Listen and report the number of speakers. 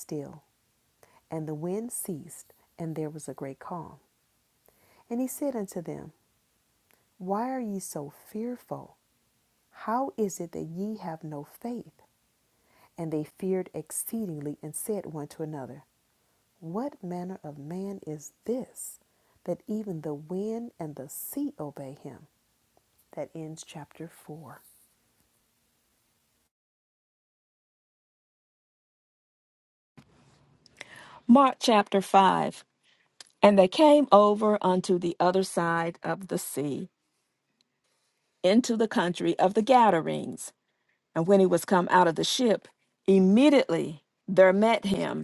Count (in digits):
2